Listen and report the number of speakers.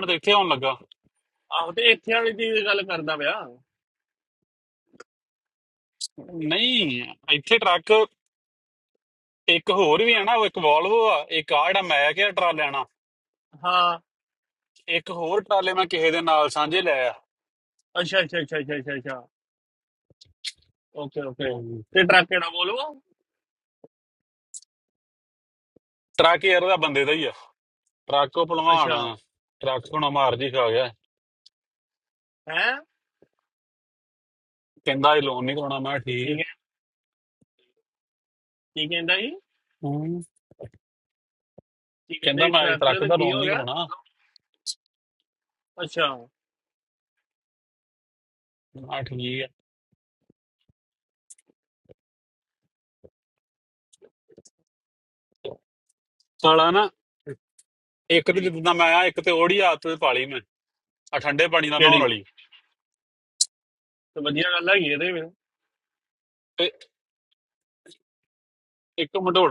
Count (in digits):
2